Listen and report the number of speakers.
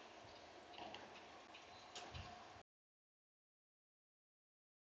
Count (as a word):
zero